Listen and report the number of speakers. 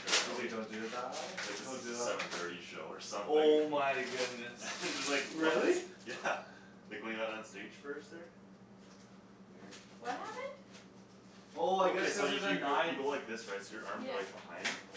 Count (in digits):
3